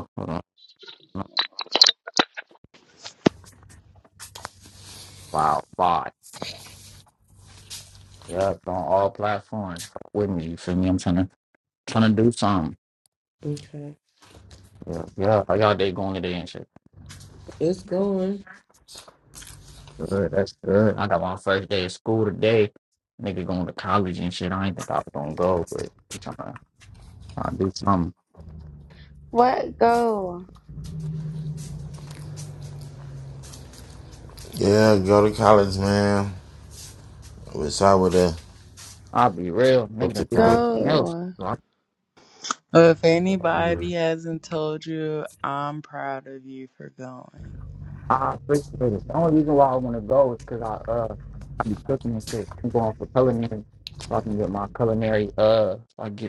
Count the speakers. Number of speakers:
five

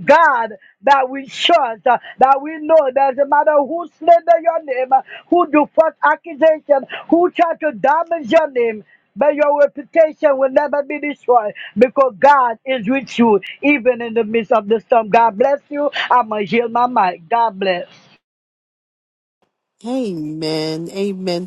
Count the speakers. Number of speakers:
two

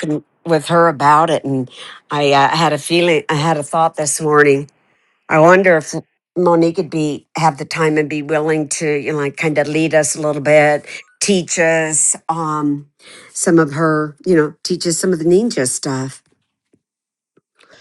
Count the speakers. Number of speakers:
one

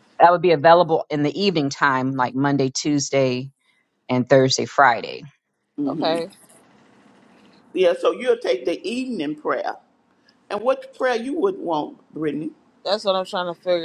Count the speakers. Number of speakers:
three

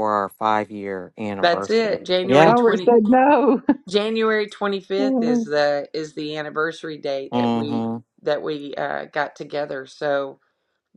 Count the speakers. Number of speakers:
three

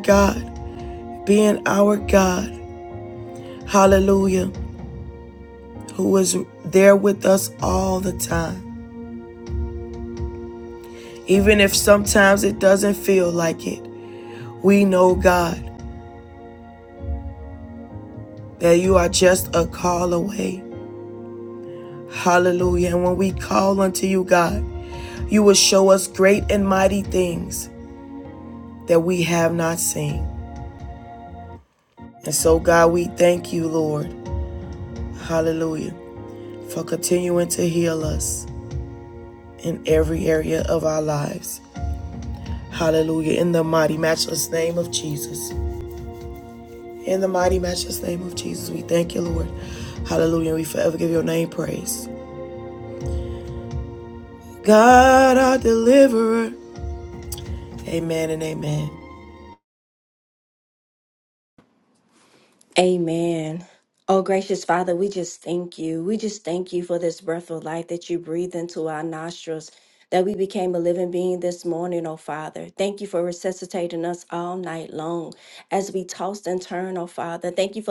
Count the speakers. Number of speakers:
two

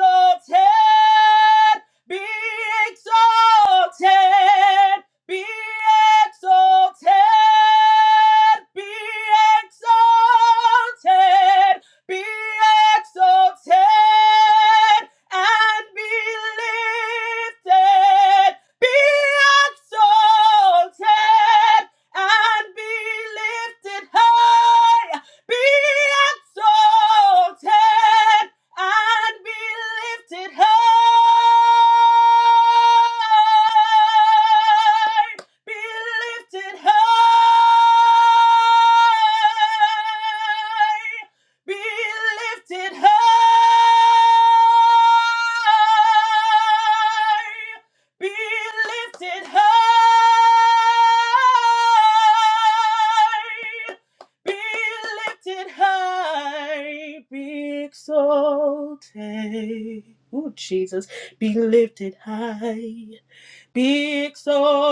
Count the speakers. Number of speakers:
one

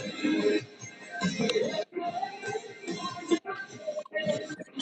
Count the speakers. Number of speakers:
zero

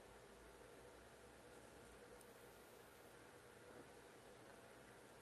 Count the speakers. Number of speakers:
zero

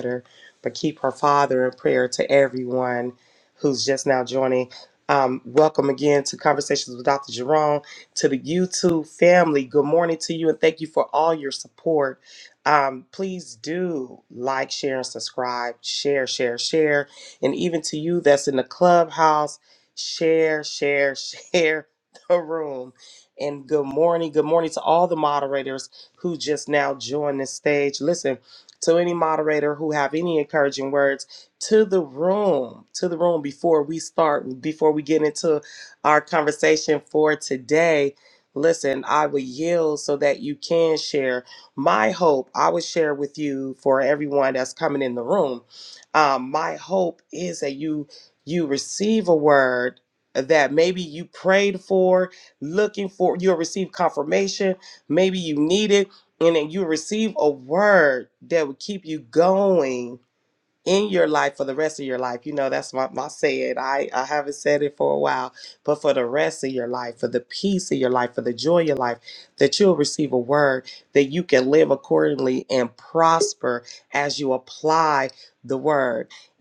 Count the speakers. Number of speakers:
one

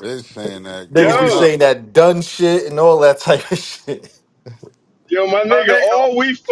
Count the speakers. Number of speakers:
three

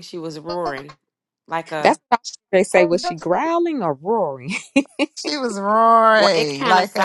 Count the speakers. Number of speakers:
three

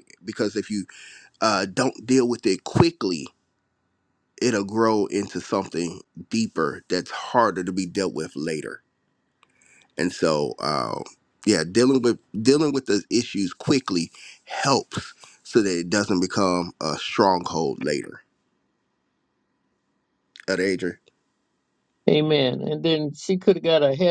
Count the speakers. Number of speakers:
two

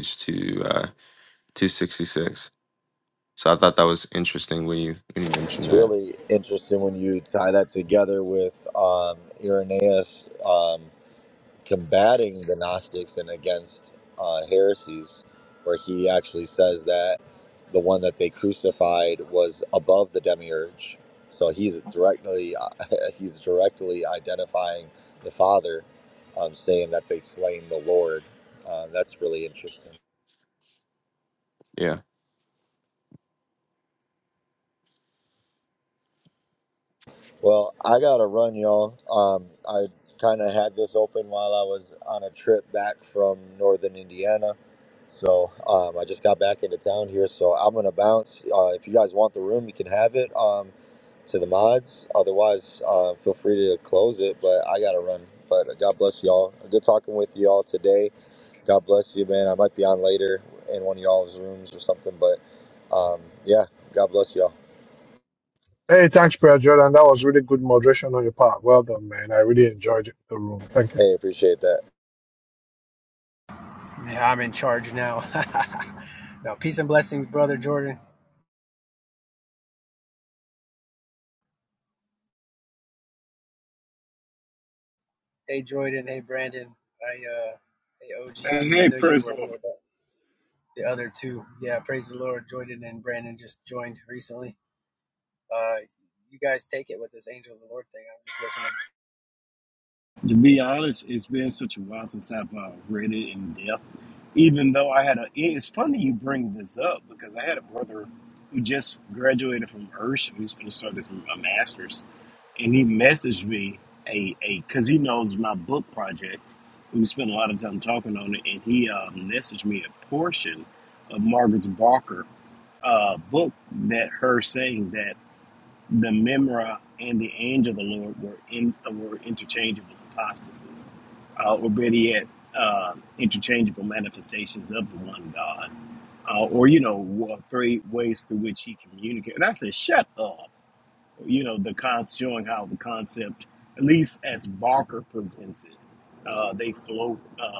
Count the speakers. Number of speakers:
five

